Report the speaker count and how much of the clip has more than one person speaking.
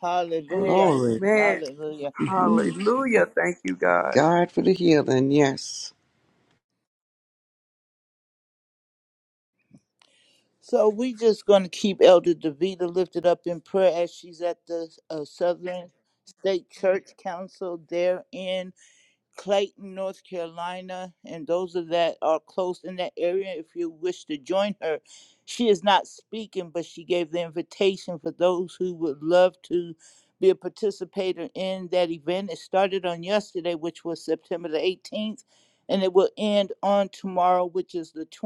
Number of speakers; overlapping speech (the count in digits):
3, about 4%